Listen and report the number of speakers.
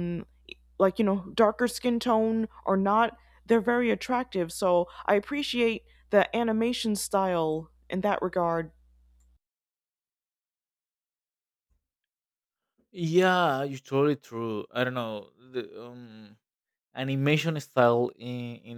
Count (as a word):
two